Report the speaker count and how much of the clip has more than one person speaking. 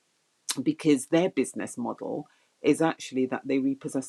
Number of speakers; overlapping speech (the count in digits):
1, no overlap